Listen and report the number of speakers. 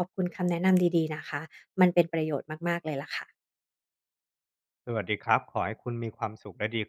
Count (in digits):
2